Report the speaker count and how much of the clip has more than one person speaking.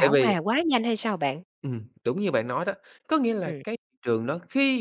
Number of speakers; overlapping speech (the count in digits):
2, about 11%